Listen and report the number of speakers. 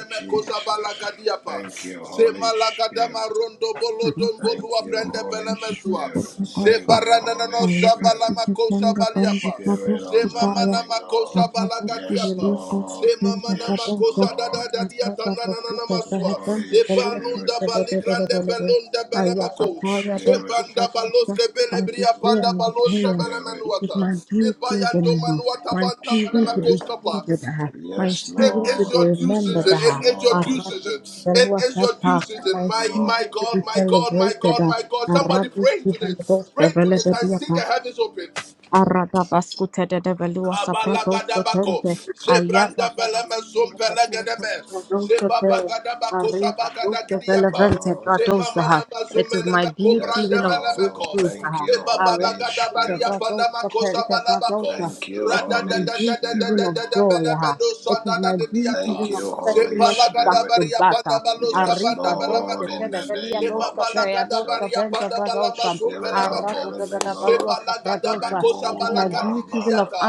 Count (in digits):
3